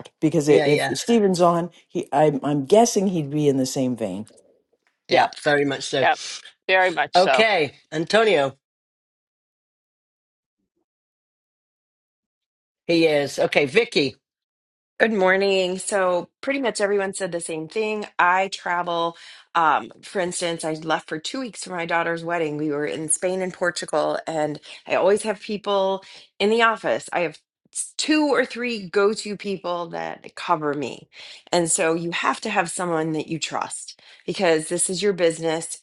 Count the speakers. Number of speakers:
4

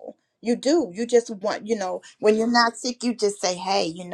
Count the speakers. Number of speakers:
1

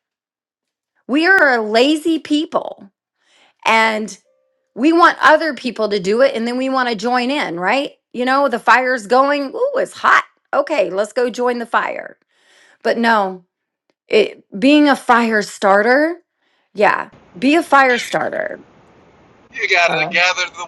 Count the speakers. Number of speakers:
2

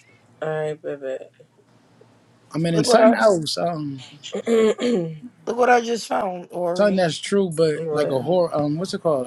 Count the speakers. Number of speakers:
3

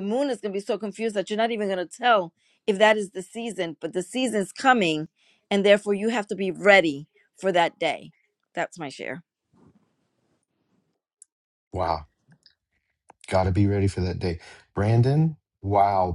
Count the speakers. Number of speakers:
2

